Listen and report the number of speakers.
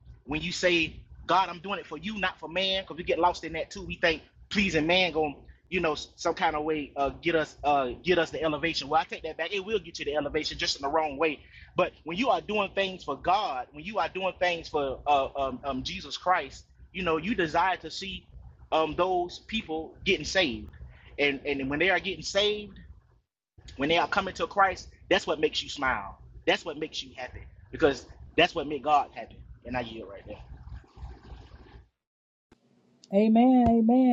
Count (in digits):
2